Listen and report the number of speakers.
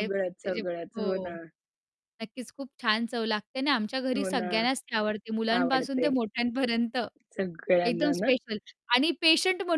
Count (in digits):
2